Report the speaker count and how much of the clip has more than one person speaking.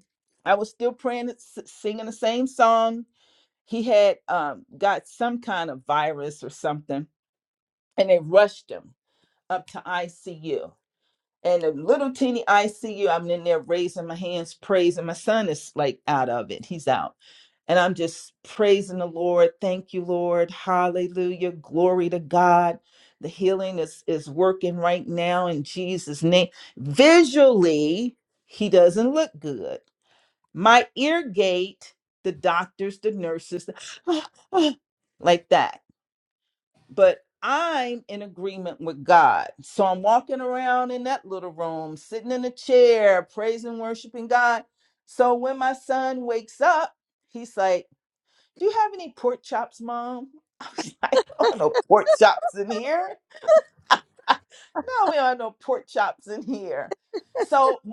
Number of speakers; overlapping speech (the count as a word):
one, no overlap